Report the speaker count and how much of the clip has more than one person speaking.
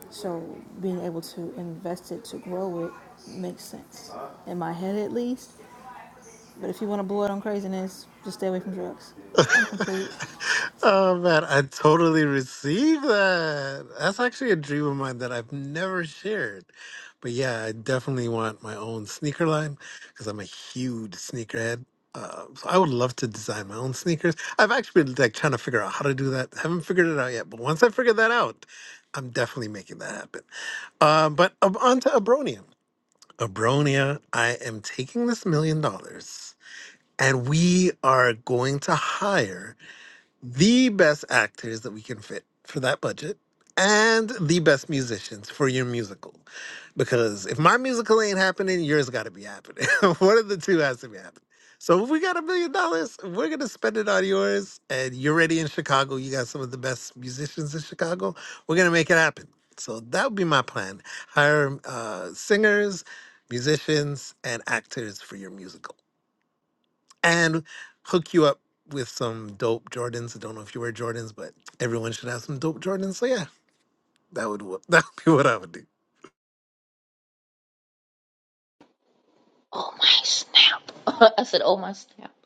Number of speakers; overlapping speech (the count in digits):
3, no overlap